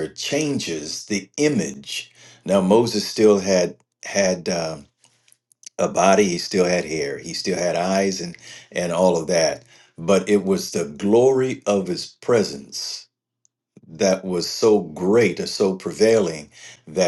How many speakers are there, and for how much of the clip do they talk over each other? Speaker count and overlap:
1, no overlap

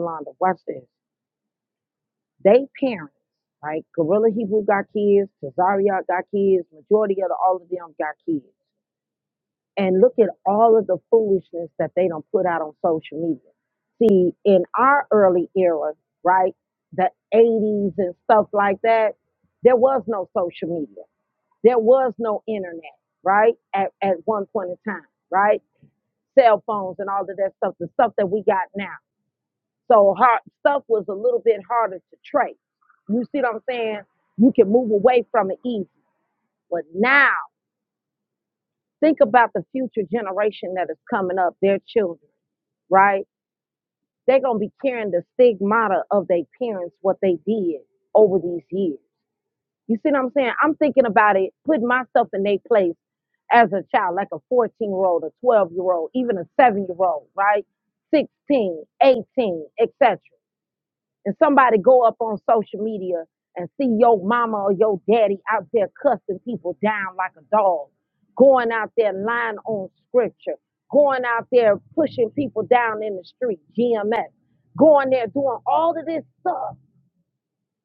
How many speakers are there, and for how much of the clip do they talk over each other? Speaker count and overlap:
1, no overlap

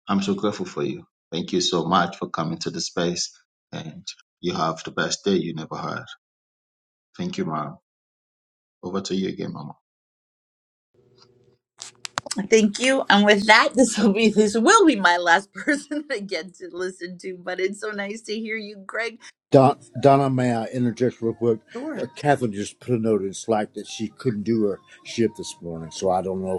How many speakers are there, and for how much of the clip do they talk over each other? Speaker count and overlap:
3, under 1%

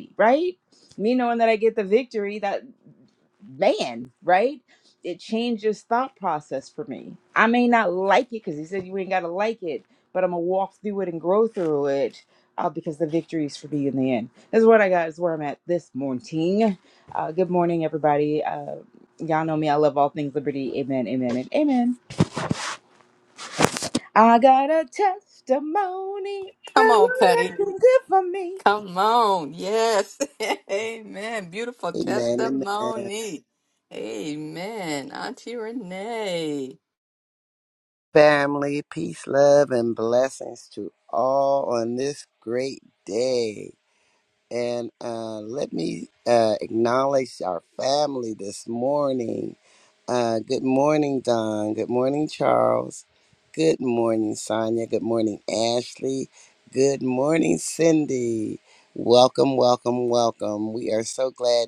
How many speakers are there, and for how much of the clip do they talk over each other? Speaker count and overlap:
3, about 3%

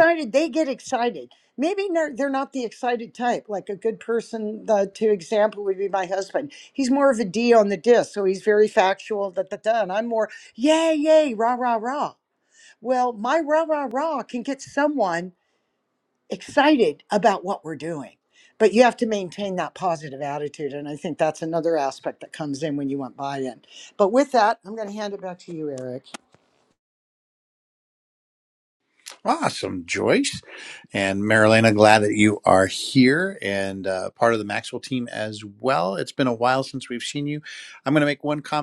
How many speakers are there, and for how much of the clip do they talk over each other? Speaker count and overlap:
2, no overlap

